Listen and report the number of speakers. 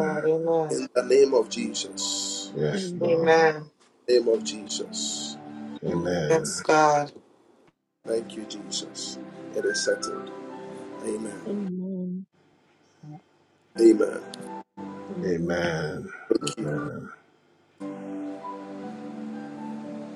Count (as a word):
four